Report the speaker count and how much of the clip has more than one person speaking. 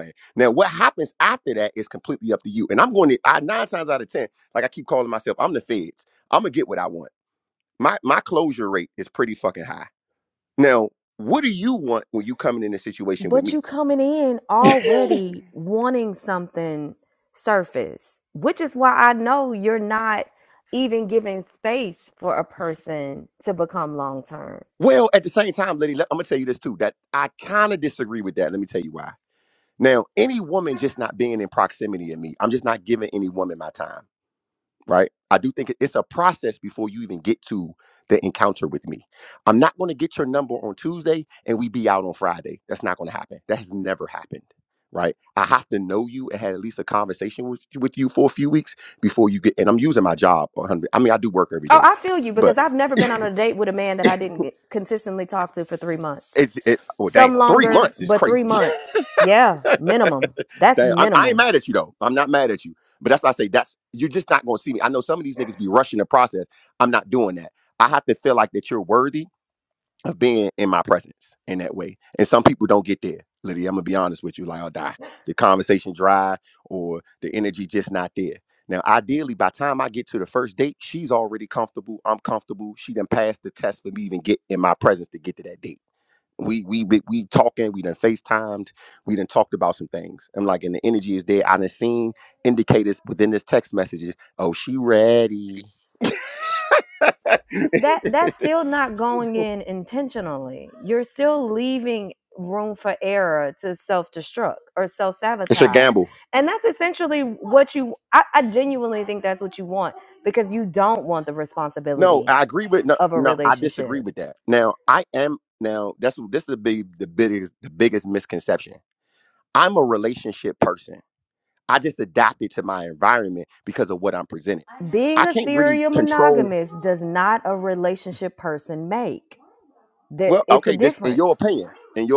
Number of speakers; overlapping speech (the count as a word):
two, about 6%